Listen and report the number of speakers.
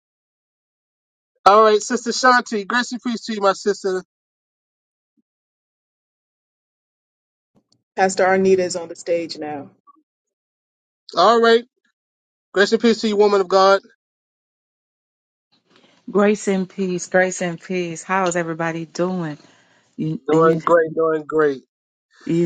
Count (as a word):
three